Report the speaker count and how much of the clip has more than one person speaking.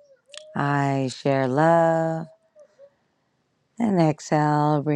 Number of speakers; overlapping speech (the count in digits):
1, no overlap